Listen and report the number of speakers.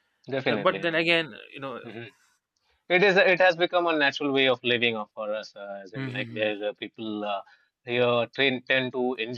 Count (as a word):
two